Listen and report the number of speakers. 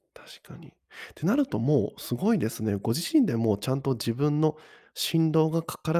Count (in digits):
1